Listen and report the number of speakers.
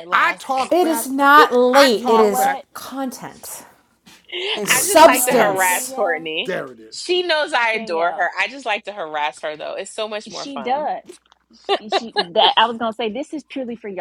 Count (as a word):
four